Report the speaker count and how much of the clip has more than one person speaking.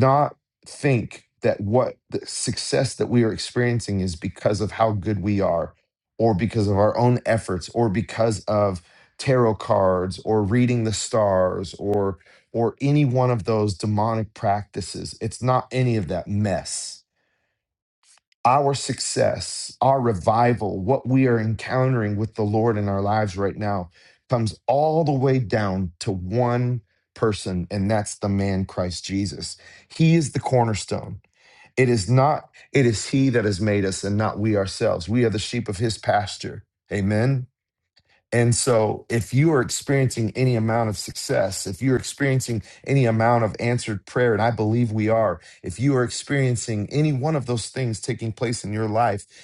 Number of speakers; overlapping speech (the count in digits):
1, no overlap